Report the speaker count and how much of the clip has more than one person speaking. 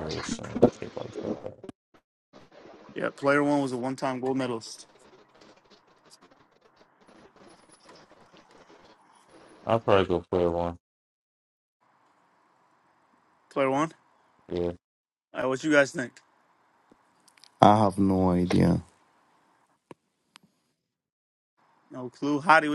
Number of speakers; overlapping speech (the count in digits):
3, no overlap